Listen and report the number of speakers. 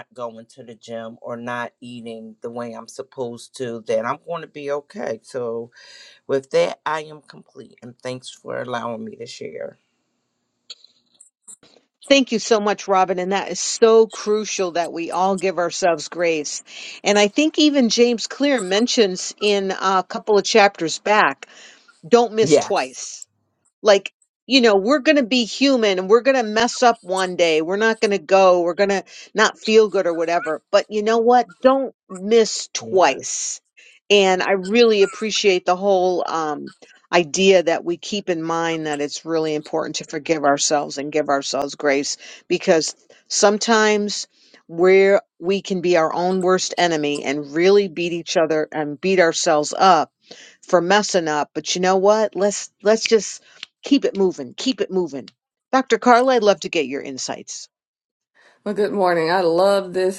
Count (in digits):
3